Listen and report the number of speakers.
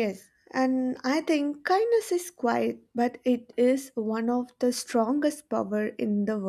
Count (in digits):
1